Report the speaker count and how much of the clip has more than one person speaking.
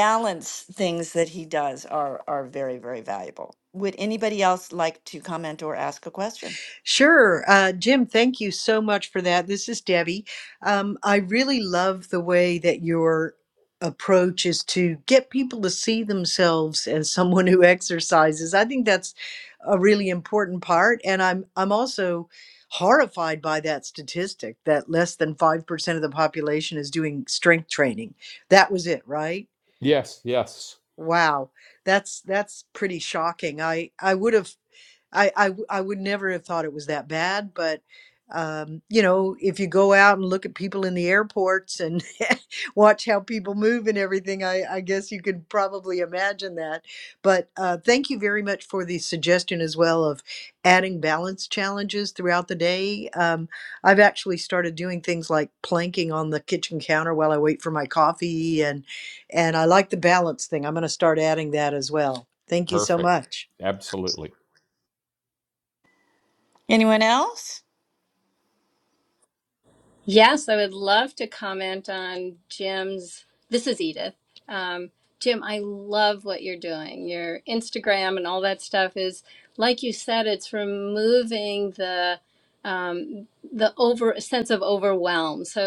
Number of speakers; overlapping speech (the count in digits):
4, under 1%